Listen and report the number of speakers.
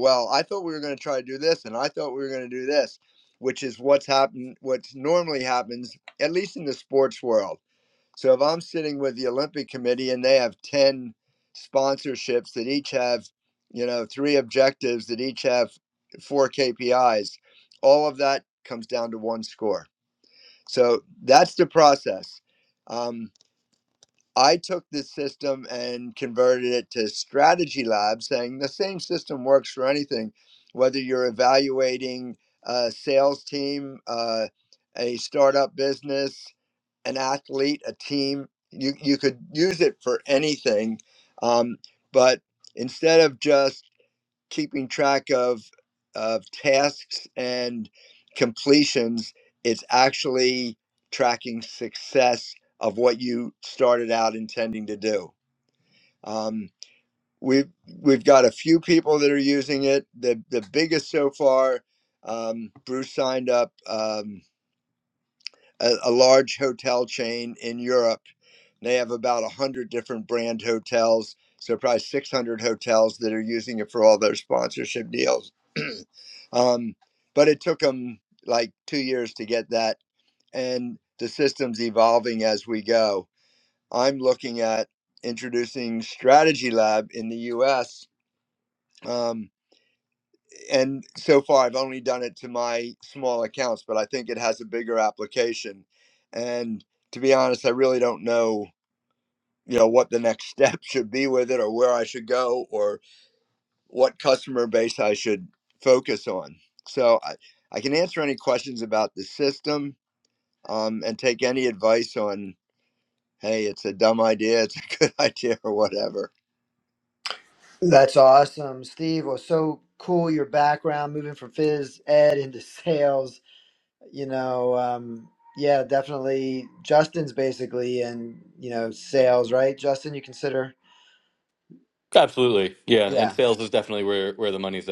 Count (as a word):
three